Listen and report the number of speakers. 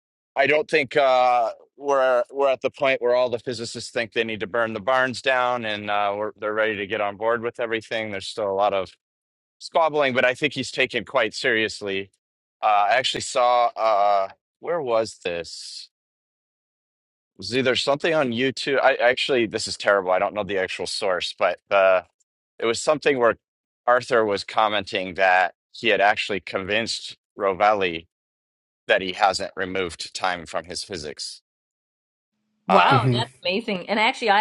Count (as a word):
two